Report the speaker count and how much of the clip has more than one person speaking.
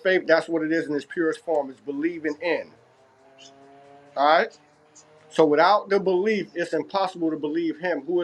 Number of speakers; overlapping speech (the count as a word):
one, no overlap